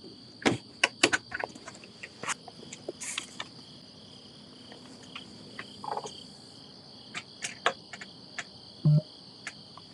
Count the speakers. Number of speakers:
0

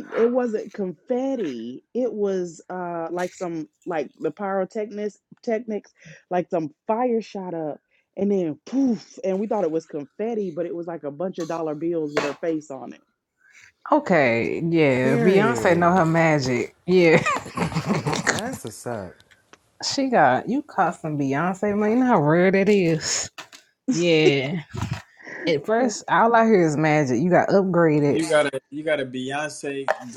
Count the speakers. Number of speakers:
4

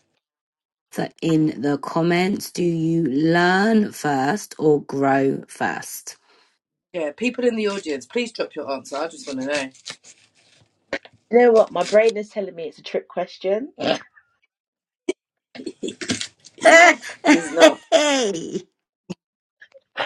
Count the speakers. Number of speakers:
3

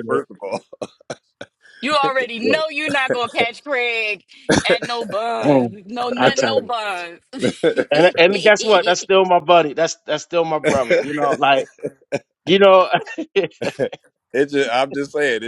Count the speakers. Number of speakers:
3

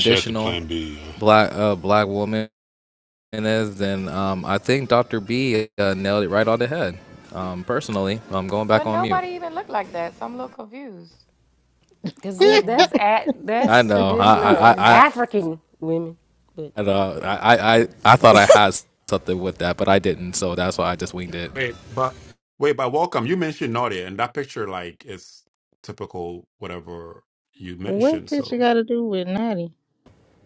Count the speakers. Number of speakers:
6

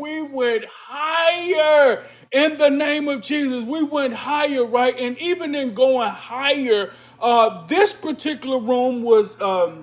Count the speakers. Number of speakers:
1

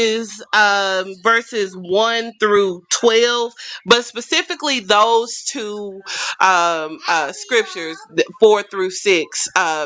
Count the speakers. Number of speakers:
1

